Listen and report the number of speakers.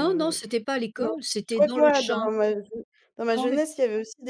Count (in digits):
2